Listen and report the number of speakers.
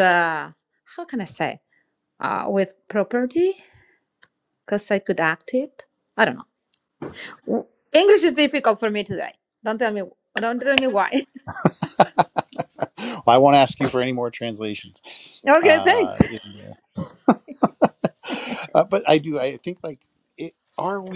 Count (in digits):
2